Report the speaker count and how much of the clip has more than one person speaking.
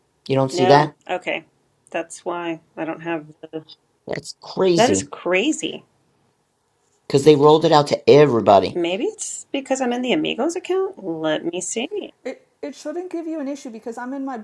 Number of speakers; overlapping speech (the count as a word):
three, about 5%